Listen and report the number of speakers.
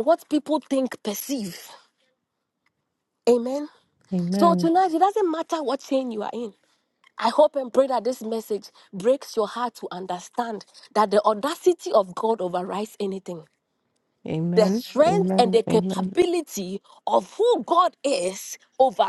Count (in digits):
2